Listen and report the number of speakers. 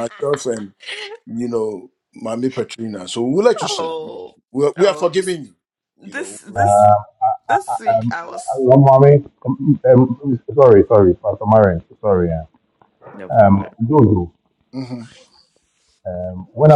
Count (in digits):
3